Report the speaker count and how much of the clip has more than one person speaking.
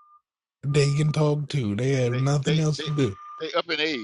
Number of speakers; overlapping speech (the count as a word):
two, about 22%